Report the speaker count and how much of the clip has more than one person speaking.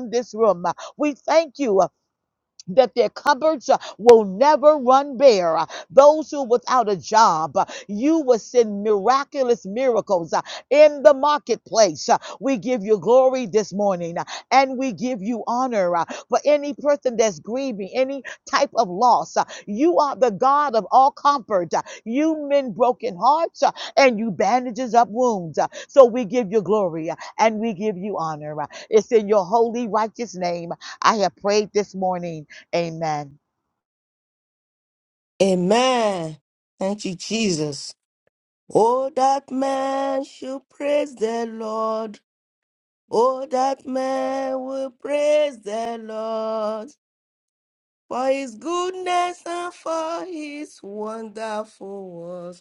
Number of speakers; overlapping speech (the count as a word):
two, no overlap